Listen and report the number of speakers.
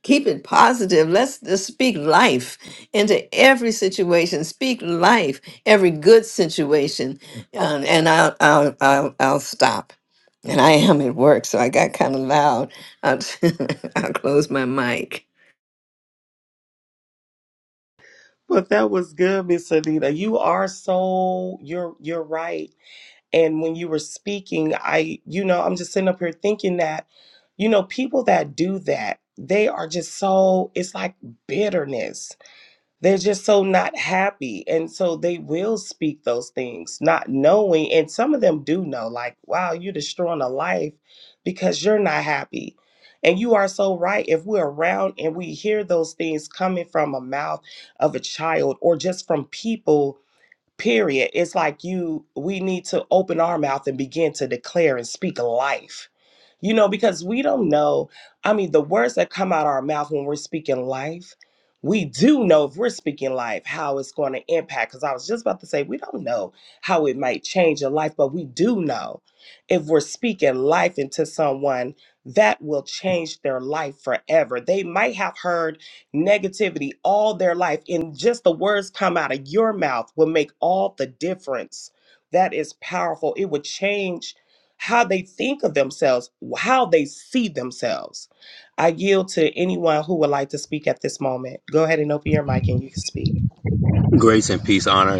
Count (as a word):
three